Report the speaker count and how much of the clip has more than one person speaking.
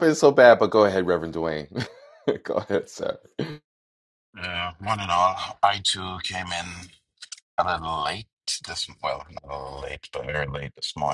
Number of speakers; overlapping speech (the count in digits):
2, no overlap